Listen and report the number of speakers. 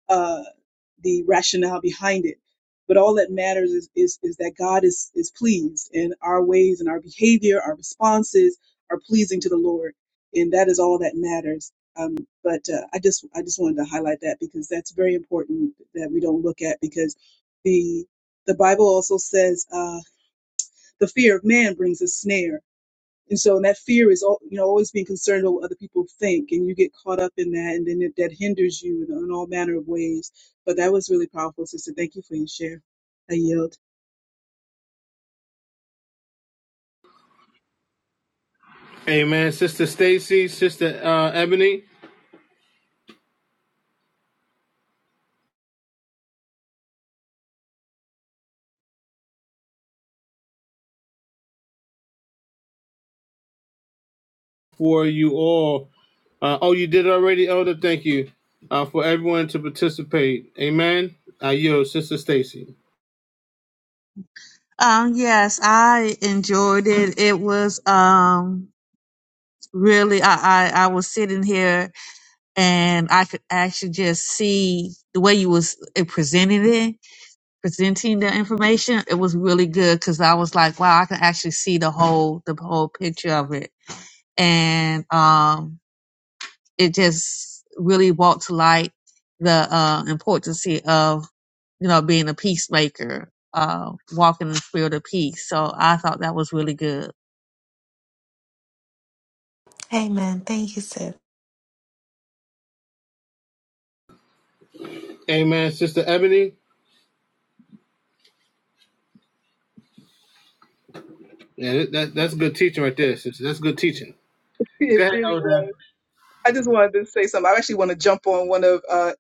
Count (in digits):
4